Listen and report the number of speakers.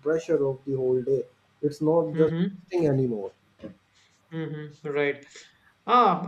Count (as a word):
two